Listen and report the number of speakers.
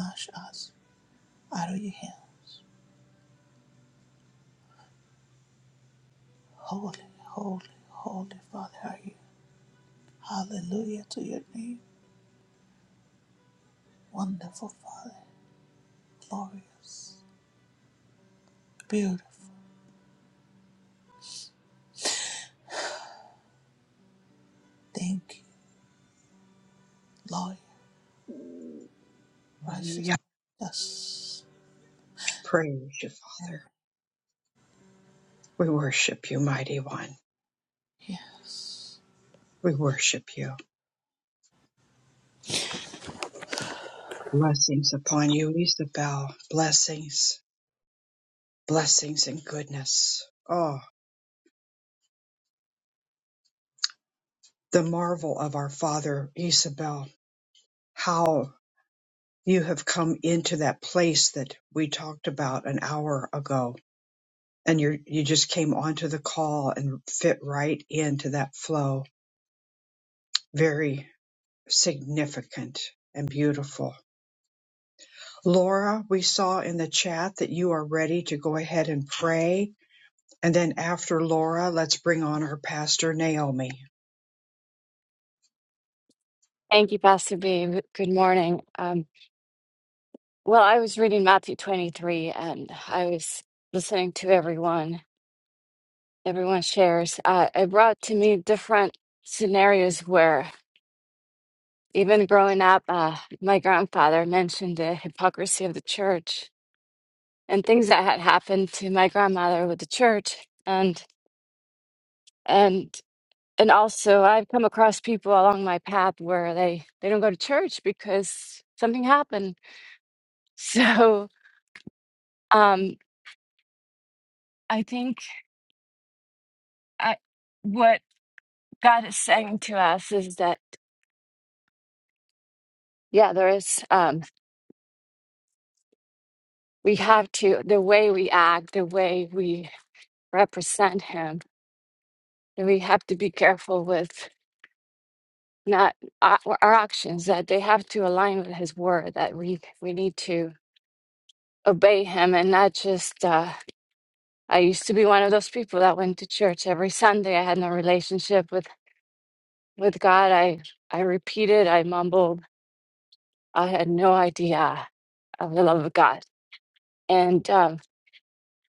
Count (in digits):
3